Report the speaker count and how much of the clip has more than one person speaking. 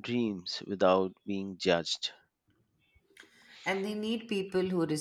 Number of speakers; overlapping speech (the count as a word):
two, no overlap